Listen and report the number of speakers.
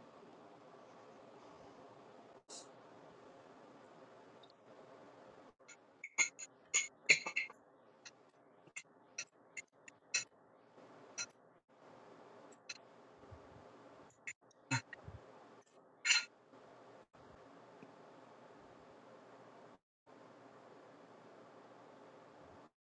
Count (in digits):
0